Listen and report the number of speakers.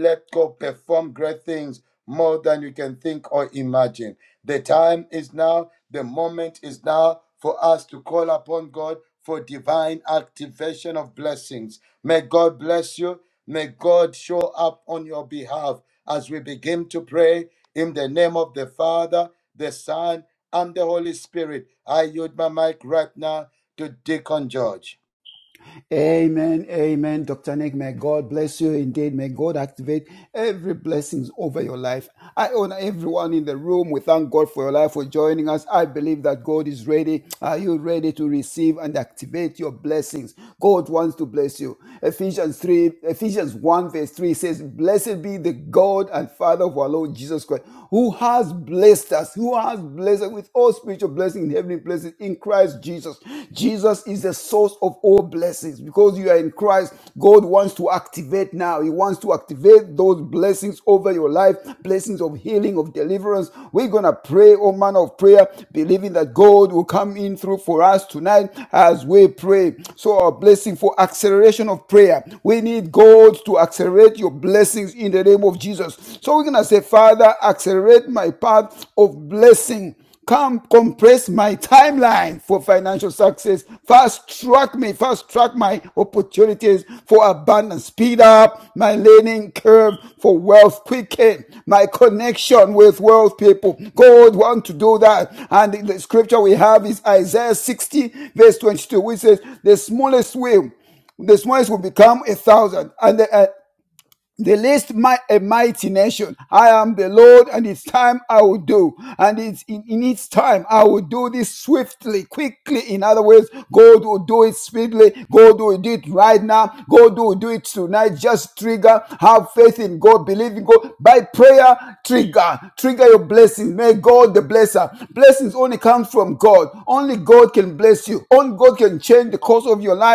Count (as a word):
two